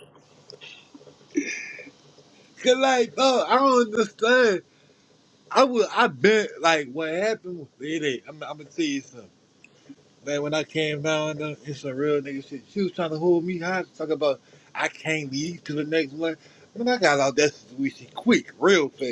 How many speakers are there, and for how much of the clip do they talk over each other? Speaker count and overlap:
1, no overlap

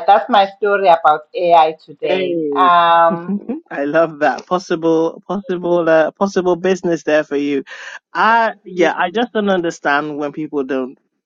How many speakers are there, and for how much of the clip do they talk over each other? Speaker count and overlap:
2, about 6%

